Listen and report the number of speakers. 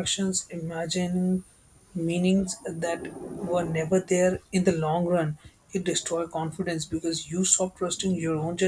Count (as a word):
one